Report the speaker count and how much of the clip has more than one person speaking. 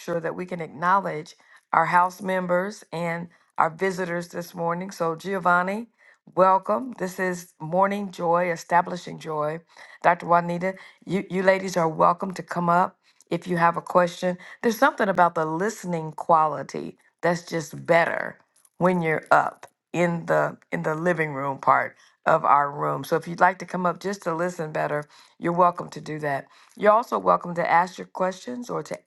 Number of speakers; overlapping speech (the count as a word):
one, no overlap